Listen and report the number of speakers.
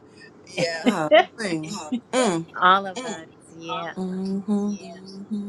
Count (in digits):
3